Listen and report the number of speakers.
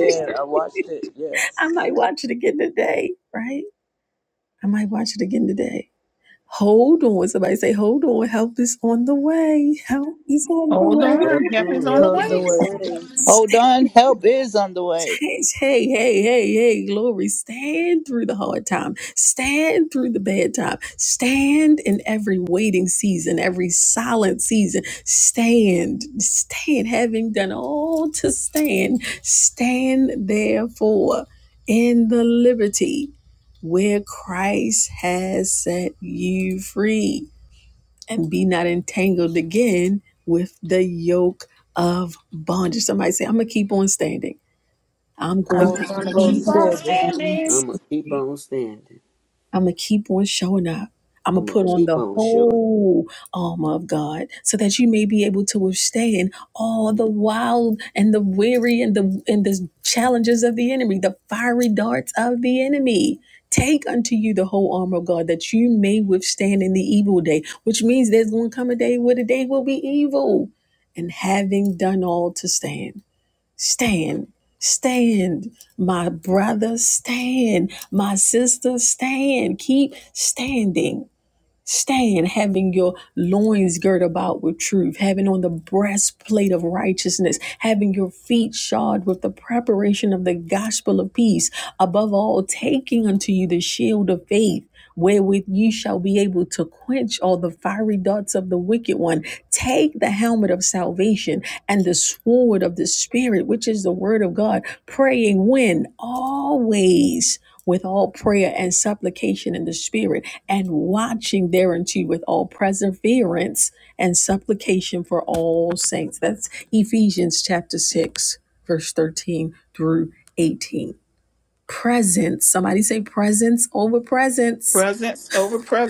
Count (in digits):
5